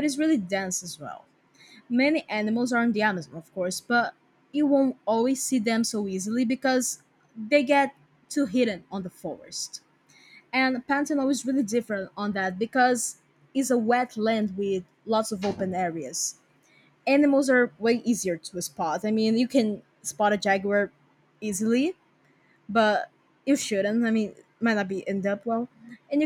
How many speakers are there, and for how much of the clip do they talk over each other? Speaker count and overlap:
1, no overlap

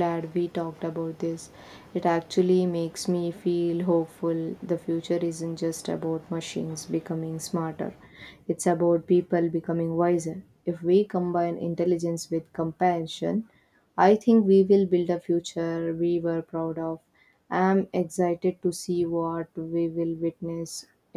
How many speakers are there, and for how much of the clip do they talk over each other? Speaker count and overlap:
1, no overlap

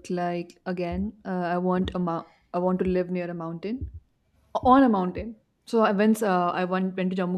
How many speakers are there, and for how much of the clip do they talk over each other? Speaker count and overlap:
1, no overlap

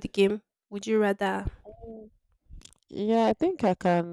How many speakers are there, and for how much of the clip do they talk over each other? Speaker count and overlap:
2, no overlap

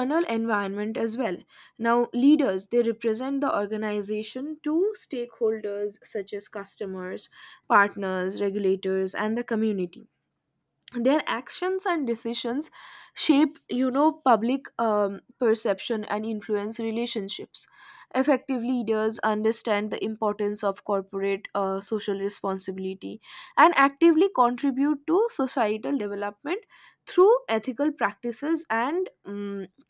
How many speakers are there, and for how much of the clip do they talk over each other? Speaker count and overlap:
1, no overlap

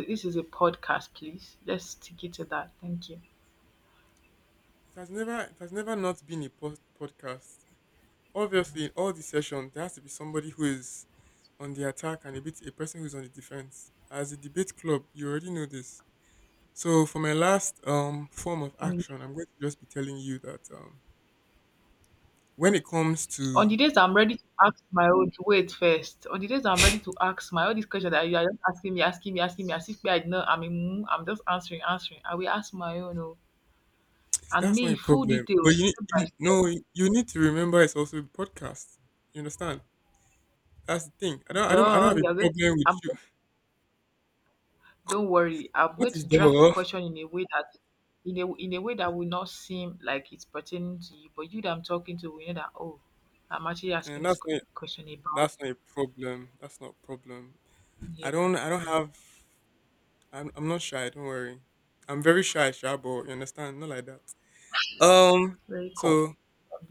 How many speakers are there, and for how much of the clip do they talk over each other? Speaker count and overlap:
2, about 8%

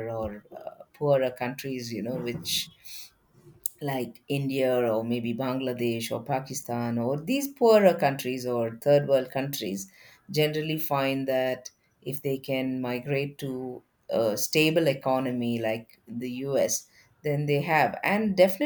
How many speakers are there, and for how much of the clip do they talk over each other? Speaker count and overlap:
1, no overlap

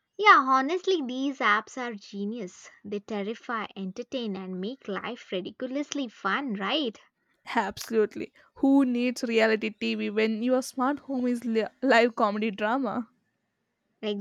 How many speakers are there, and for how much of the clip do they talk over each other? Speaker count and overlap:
2, no overlap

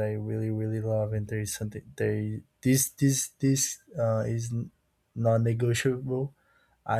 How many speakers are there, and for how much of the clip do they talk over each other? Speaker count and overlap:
1, no overlap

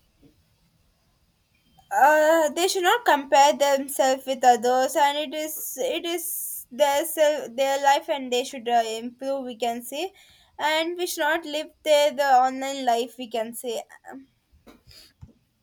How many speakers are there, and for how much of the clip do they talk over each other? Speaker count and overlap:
1, no overlap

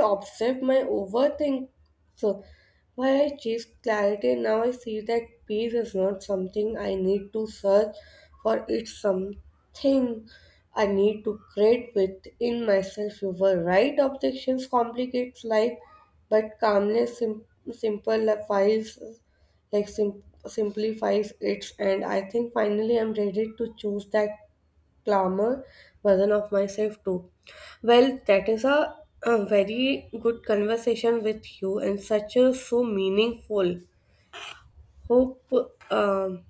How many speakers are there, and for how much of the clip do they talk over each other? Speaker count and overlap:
1, no overlap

